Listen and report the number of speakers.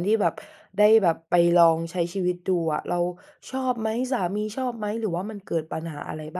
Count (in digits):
1